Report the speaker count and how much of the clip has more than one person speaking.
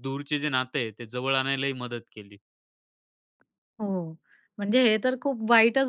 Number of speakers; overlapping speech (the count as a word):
two, no overlap